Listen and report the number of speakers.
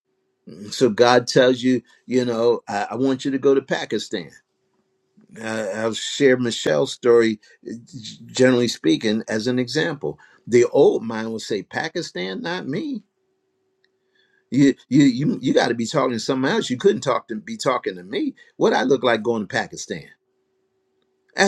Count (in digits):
1